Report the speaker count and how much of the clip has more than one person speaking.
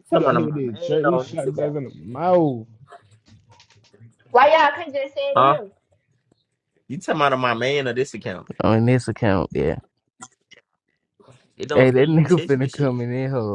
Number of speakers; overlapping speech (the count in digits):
4, about 22%